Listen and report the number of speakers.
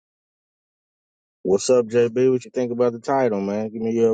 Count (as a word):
one